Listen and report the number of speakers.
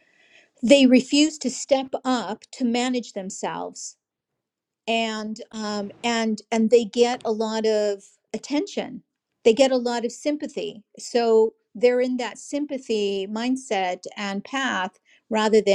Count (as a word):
one